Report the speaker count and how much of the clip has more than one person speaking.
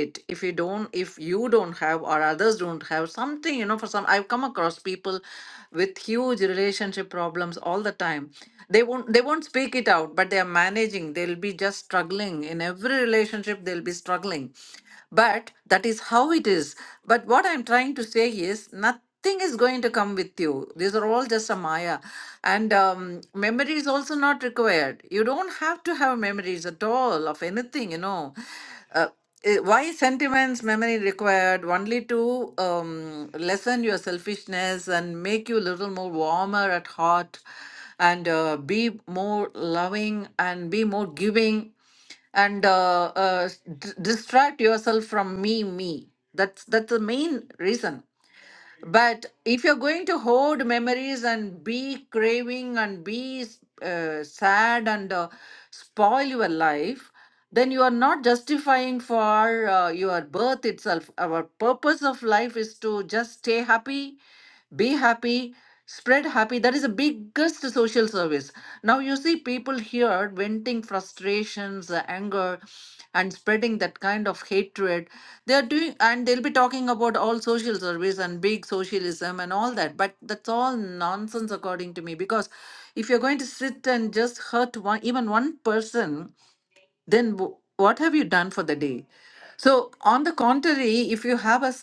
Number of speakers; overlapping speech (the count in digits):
1, no overlap